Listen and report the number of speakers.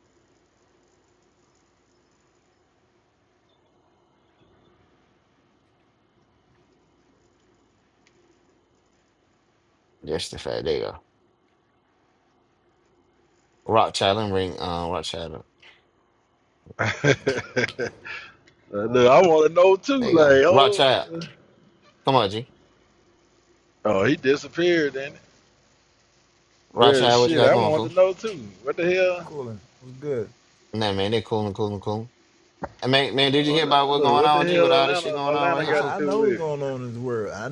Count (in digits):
3